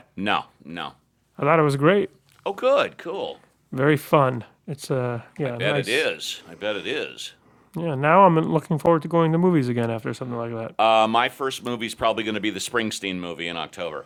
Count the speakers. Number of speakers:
2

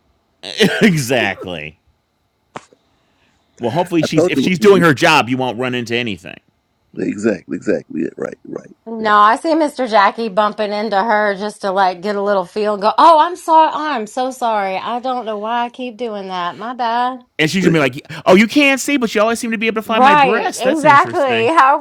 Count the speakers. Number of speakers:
3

